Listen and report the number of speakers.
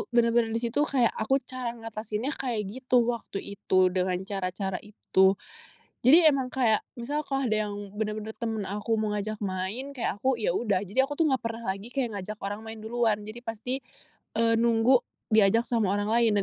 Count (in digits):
1